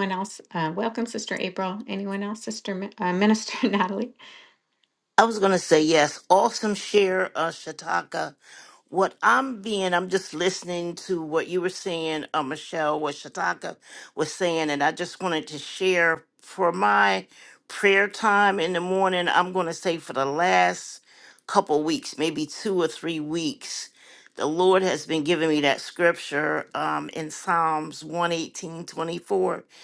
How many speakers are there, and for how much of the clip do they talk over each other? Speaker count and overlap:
2, no overlap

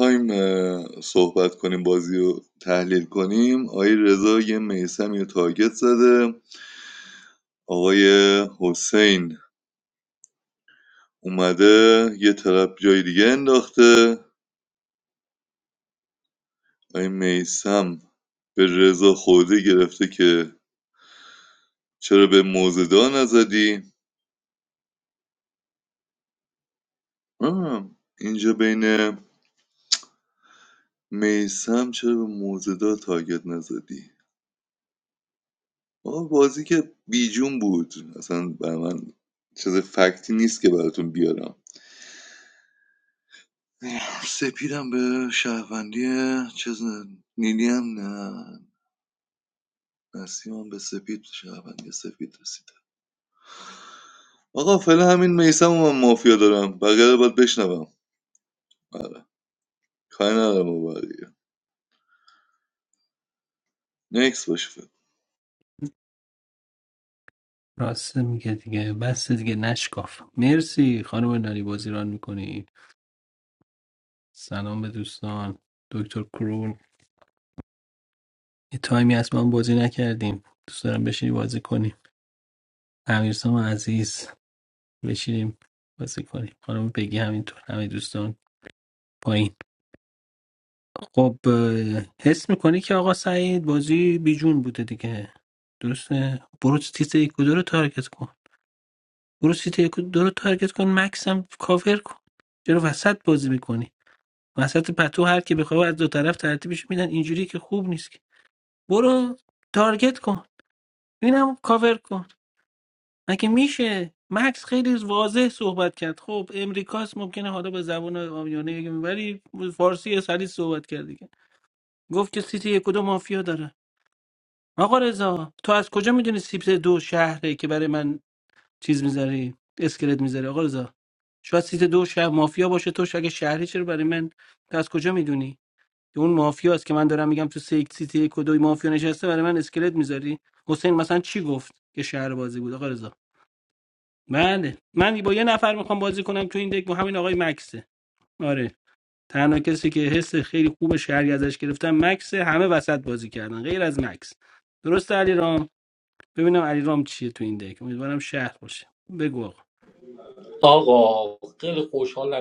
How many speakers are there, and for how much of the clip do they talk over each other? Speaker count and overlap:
3, no overlap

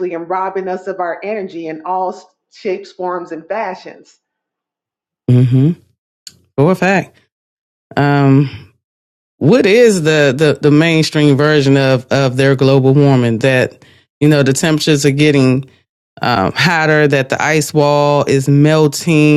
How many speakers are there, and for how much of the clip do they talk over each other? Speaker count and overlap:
2, no overlap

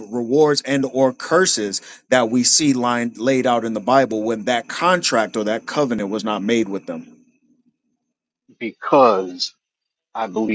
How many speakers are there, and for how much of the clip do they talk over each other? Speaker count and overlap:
2, no overlap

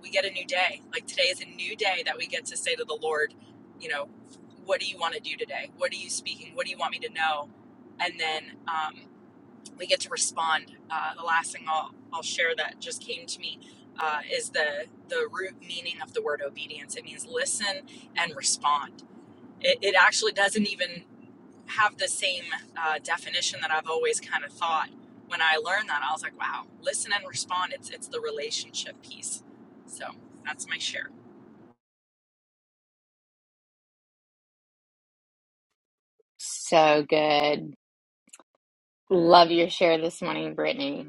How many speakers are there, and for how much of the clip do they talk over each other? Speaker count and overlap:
2, no overlap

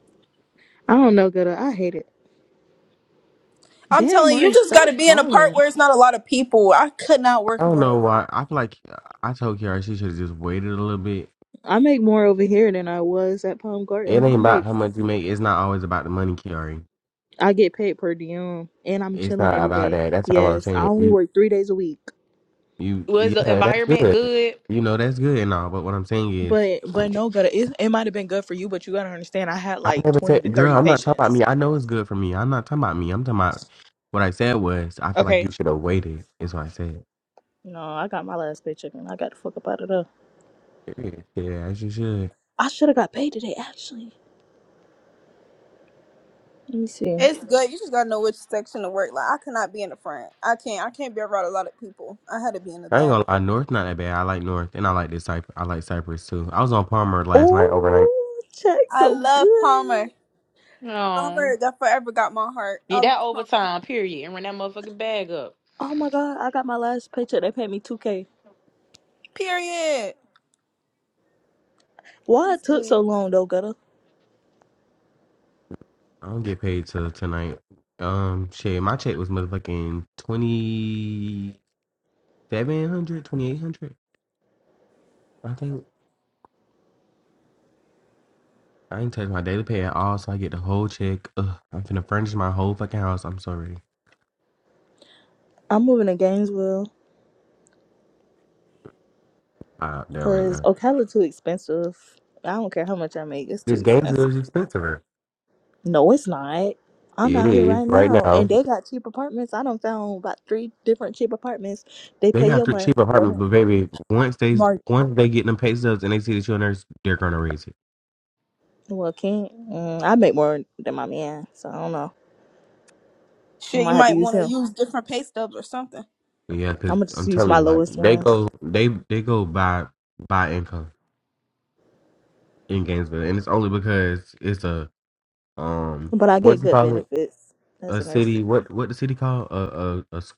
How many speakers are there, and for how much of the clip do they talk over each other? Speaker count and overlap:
4, about 13%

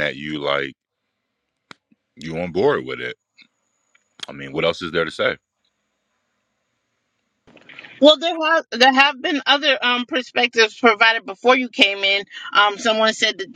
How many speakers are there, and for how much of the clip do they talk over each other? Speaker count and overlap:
2, no overlap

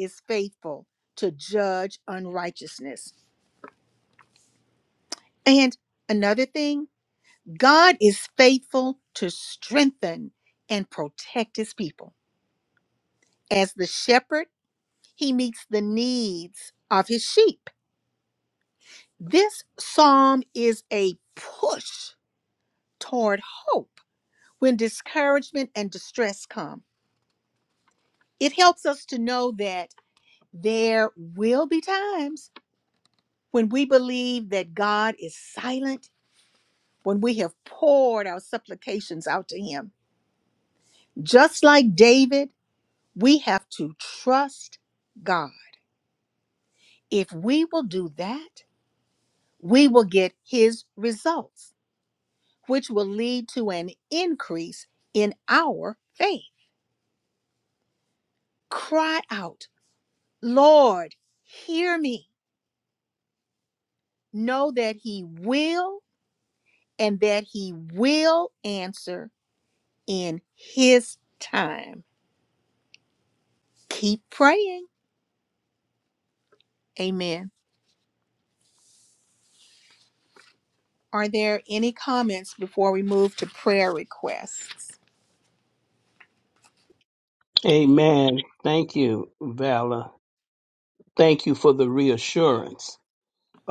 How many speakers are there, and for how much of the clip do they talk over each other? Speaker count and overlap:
2, no overlap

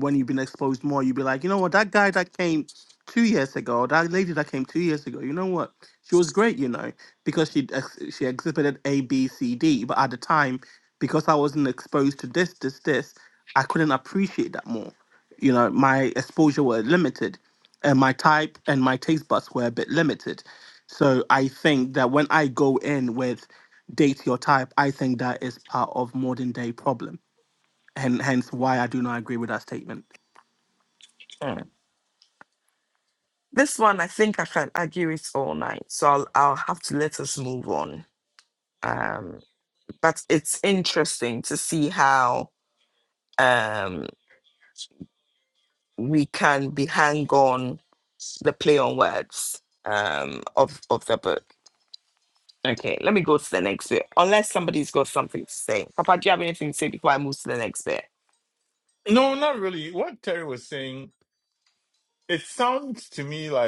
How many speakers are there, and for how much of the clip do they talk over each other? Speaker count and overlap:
3, no overlap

